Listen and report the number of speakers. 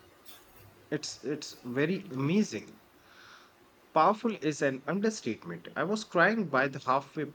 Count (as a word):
one